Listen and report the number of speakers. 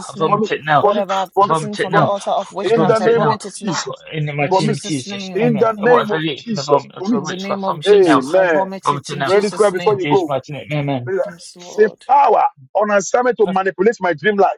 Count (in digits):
3